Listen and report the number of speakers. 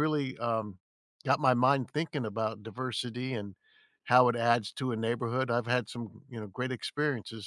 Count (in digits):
1